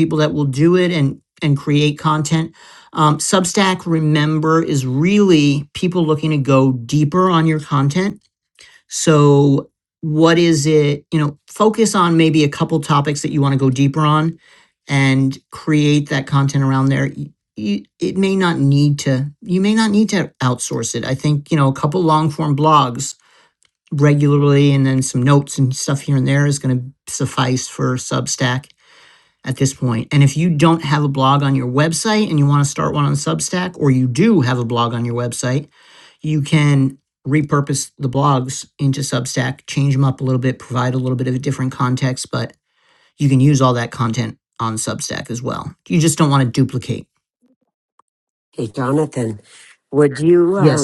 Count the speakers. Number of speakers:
2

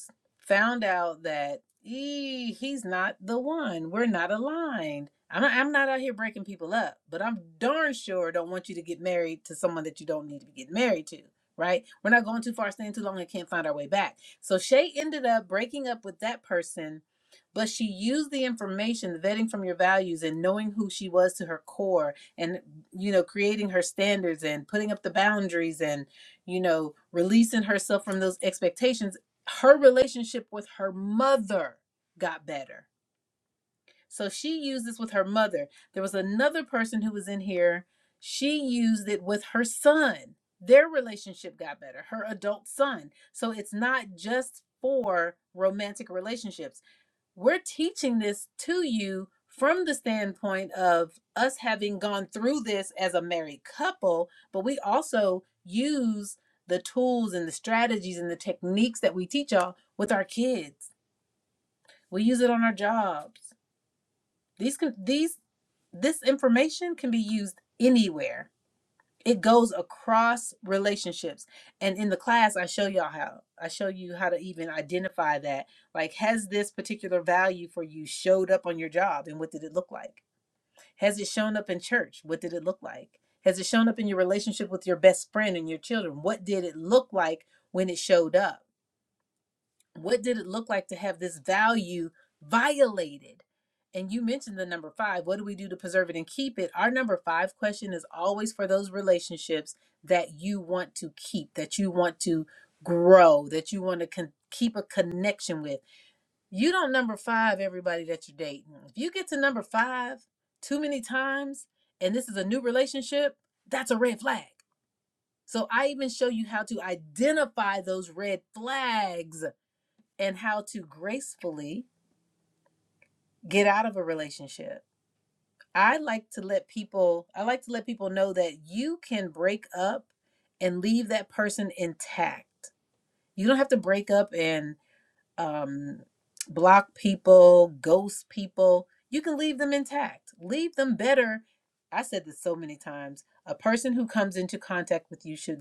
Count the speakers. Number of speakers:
1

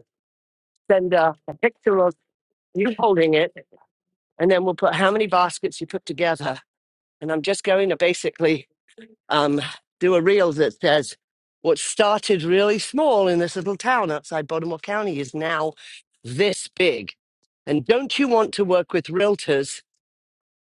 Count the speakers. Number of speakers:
1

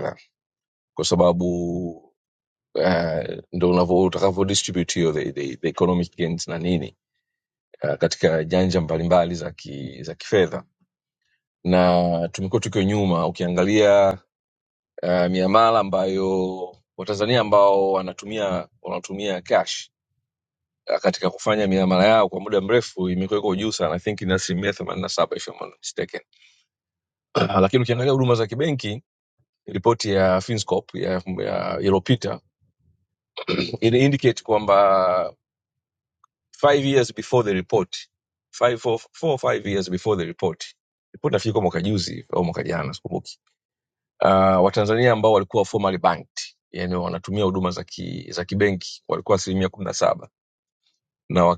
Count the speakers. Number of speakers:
1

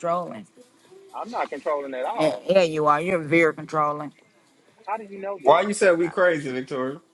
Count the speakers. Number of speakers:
3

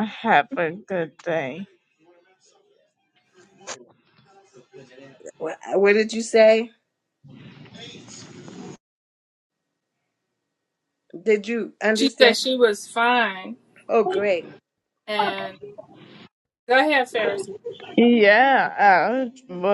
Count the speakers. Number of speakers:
3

